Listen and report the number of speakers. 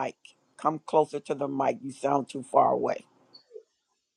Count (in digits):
1